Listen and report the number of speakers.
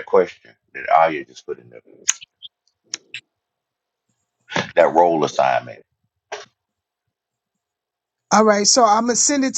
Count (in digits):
2